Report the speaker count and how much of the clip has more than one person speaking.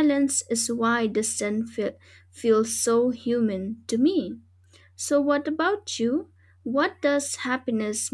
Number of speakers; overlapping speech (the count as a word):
one, no overlap